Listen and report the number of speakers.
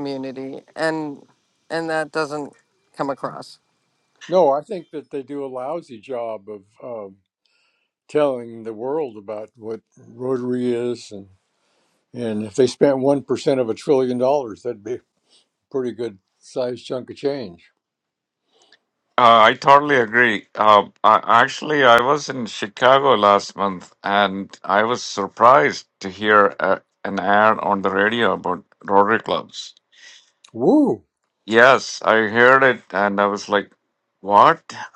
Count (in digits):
3